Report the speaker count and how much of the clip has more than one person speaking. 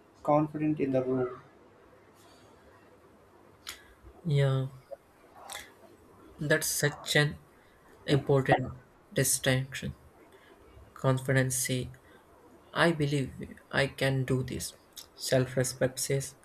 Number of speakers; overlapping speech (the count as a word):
two, no overlap